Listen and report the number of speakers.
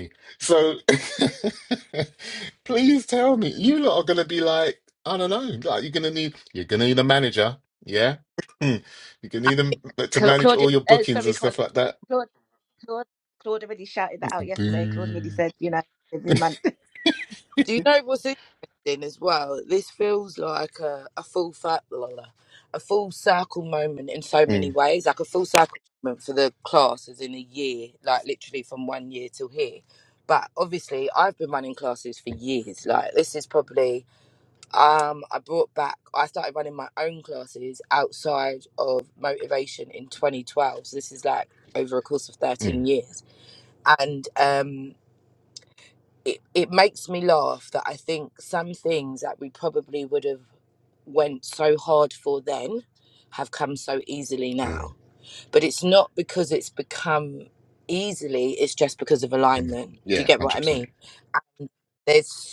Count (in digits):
3